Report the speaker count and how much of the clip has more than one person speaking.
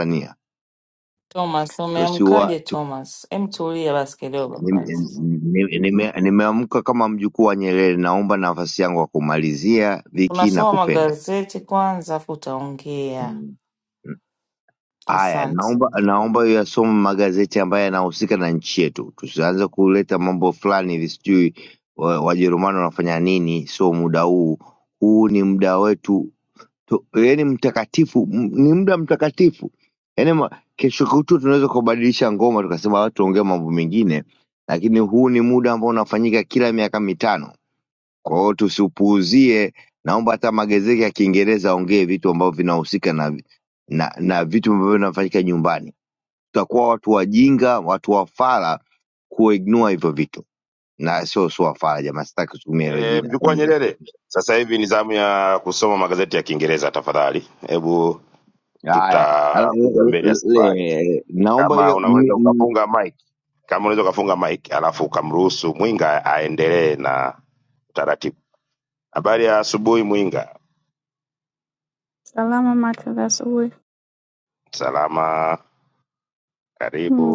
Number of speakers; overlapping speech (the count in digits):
4, about 9%